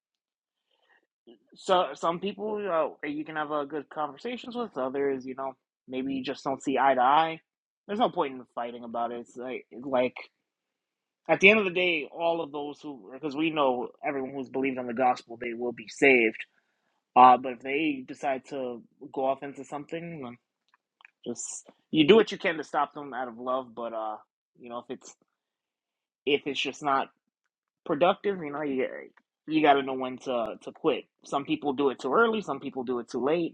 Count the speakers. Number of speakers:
1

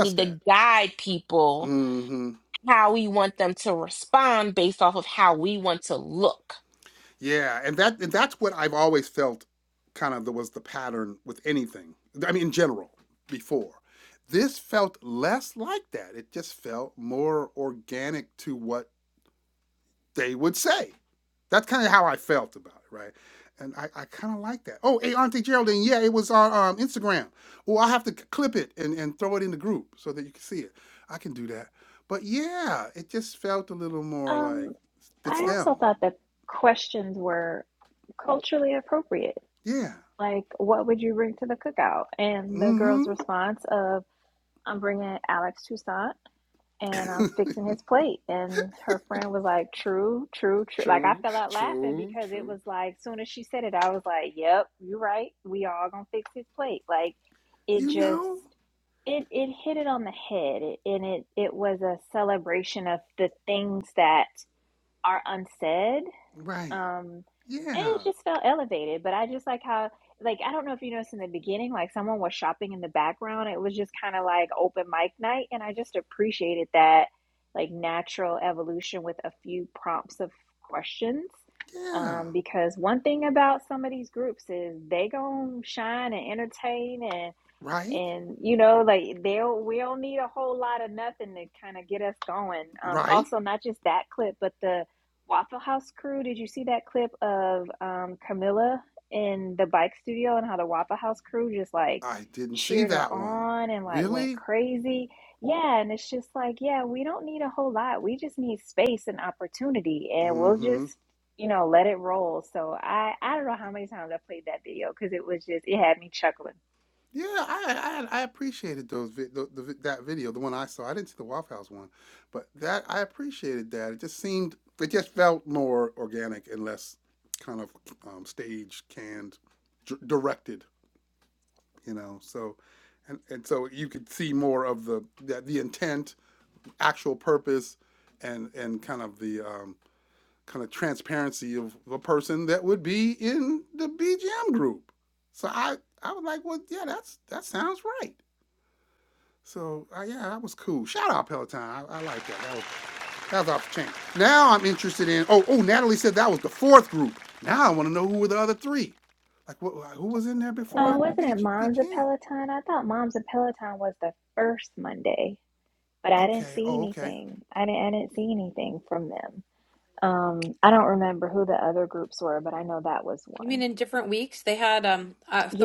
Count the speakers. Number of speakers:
4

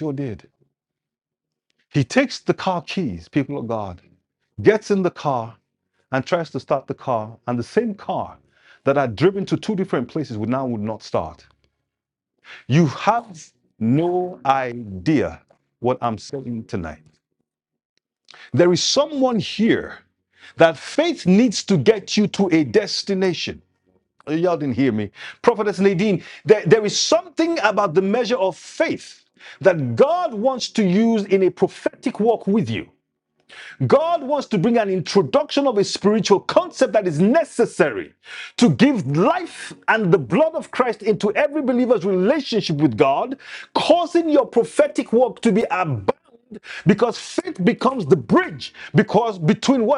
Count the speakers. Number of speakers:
1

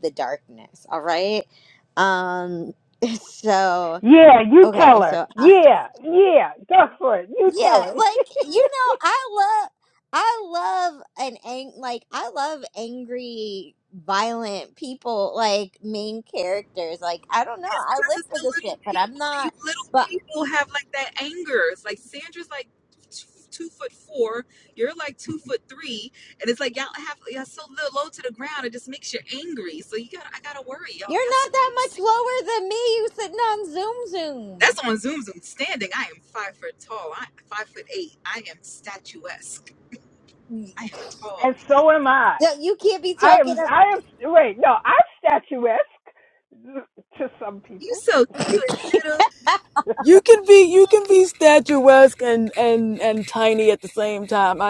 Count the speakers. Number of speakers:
4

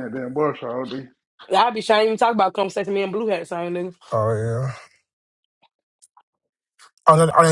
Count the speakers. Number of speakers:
3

